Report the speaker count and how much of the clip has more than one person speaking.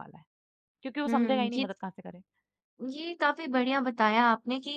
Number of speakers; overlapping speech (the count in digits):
2, about 13%